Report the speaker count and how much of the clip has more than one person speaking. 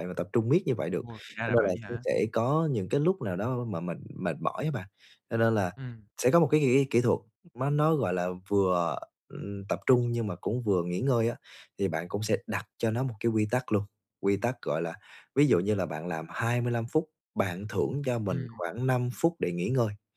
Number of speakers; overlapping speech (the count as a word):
two, about 4%